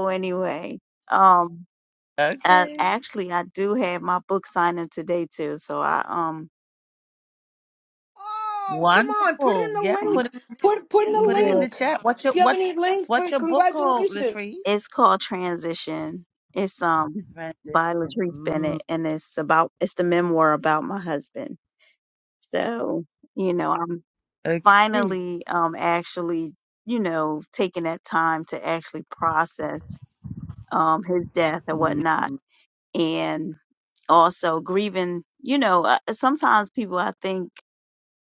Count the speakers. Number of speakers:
3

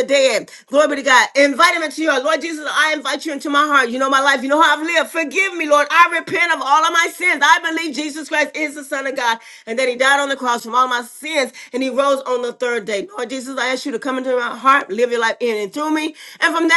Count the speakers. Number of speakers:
1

